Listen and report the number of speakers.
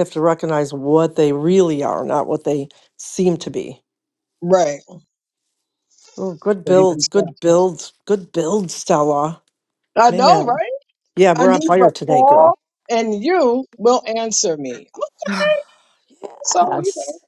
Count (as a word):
two